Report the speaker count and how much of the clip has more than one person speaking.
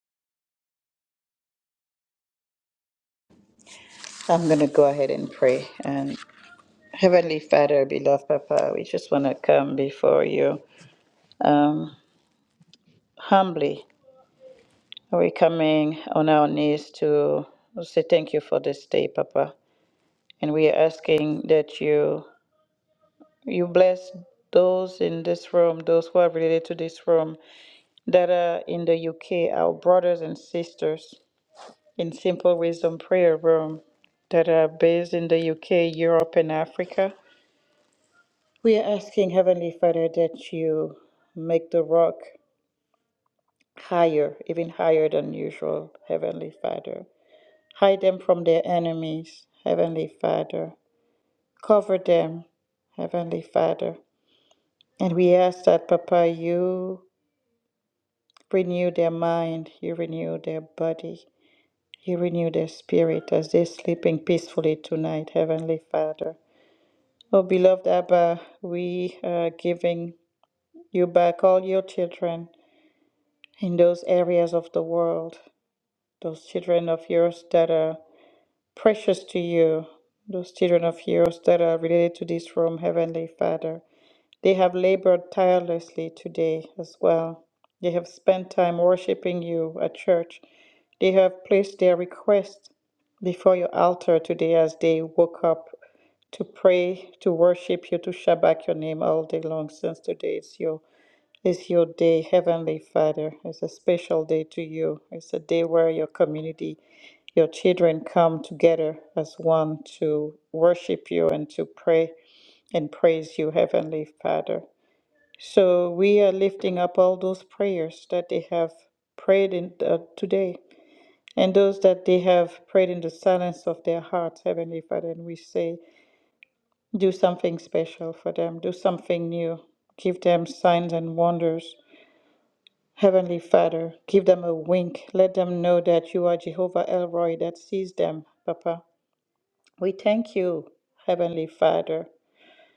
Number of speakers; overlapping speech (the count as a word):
one, no overlap